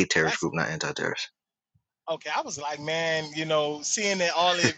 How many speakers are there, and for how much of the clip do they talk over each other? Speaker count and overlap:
2, about 3%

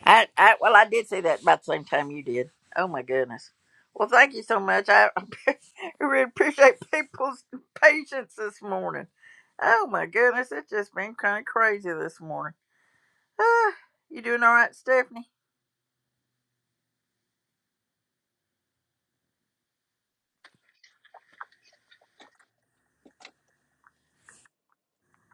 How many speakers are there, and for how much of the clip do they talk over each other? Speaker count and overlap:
1, no overlap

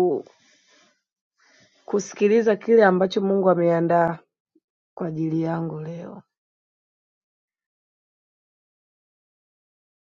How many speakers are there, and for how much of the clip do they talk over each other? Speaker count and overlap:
1, no overlap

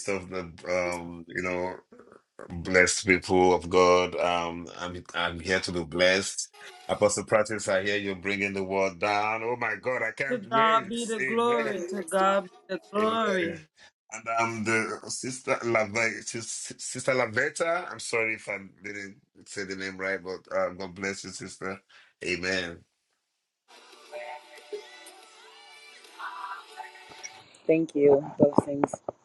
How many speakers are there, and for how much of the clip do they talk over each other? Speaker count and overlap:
3, about 8%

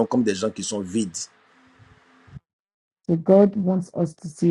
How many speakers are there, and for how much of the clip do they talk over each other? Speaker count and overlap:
2, no overlap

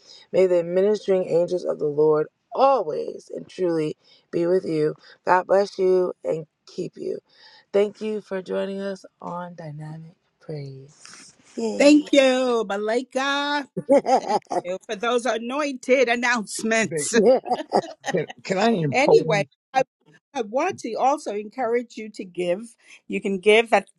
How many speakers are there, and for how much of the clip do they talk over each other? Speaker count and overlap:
3, about 4%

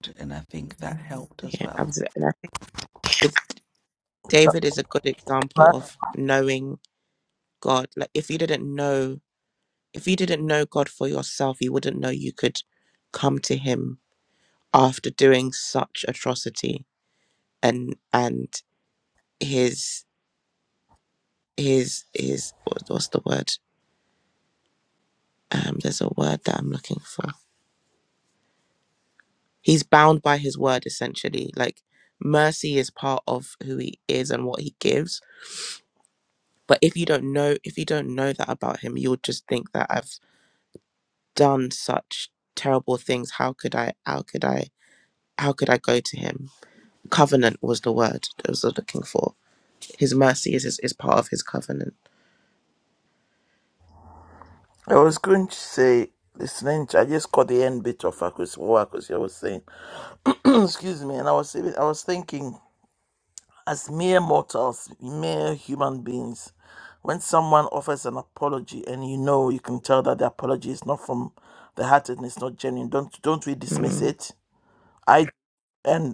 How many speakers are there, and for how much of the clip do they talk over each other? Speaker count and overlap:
3, about 1%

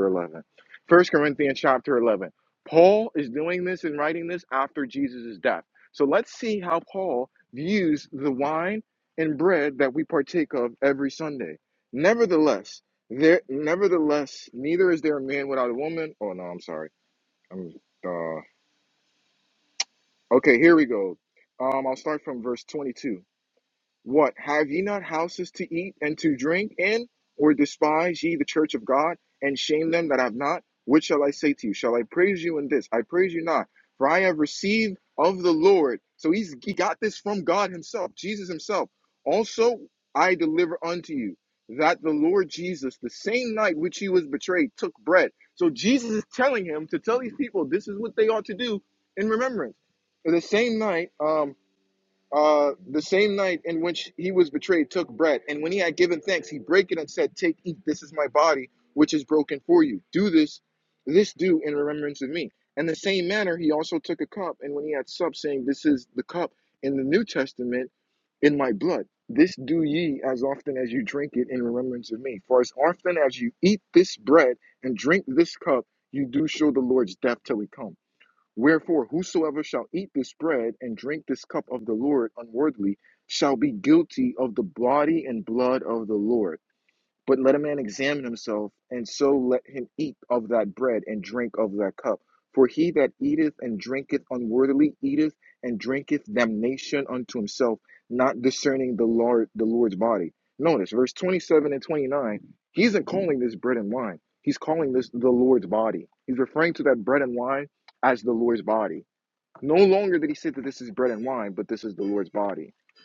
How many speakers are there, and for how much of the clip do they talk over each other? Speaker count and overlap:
1, no overlap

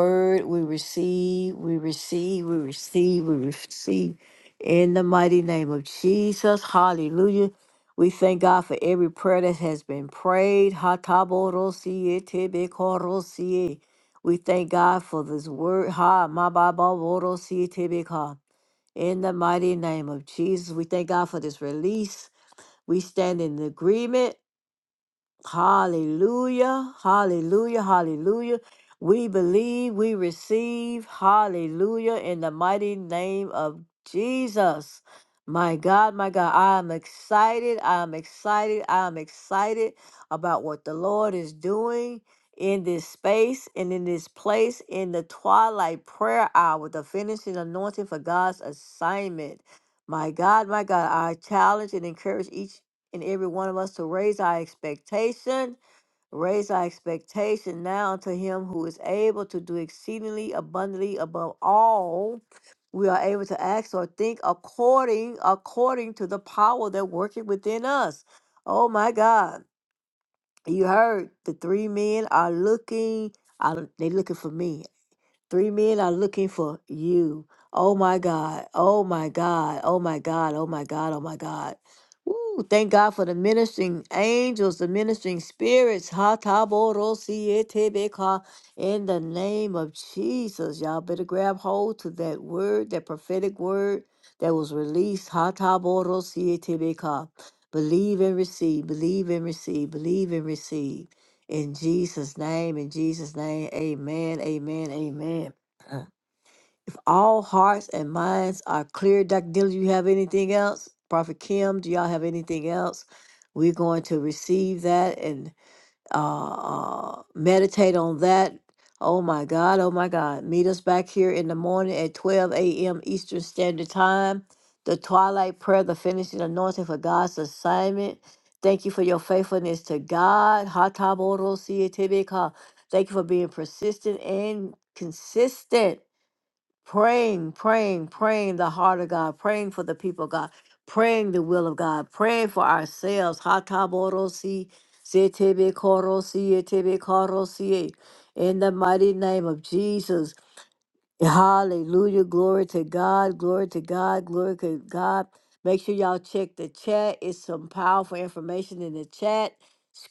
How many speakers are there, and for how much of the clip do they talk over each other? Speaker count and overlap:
1, no overlap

